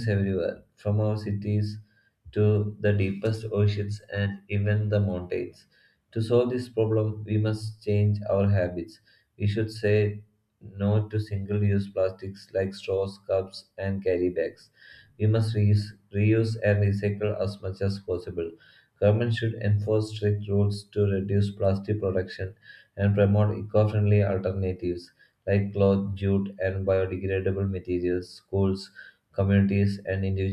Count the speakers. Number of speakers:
one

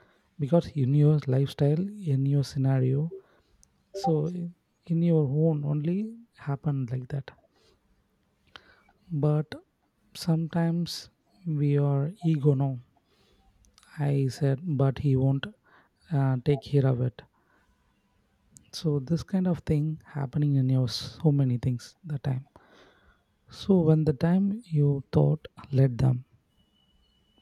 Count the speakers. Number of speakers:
one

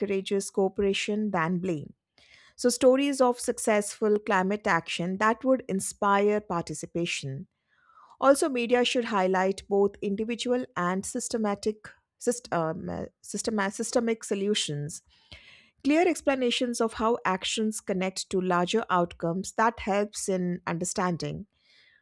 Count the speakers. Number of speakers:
one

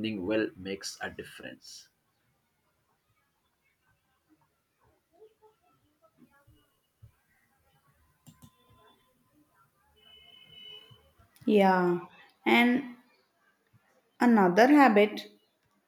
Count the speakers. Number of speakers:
two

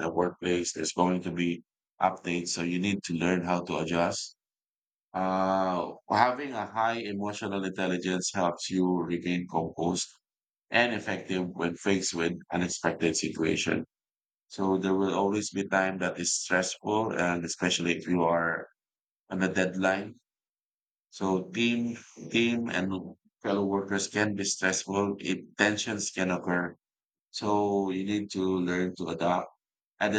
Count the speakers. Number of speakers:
one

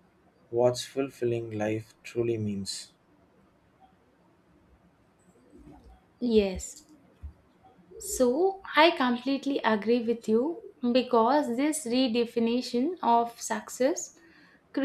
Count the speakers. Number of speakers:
two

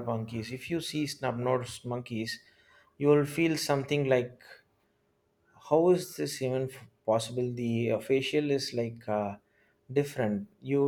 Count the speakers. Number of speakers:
one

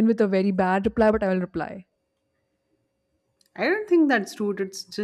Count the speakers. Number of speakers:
two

